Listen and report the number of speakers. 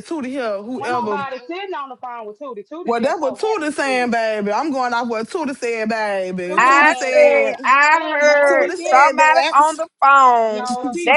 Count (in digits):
3